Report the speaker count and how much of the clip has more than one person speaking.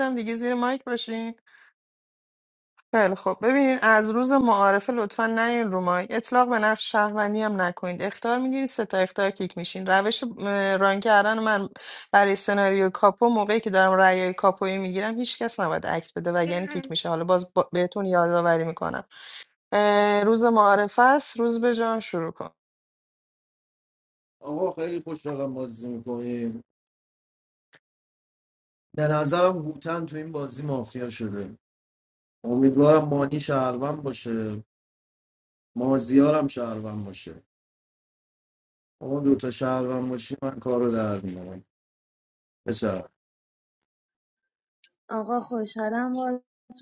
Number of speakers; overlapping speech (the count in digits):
3, no overlap